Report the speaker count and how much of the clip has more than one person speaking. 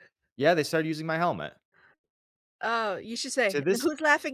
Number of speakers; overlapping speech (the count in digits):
2, about 8%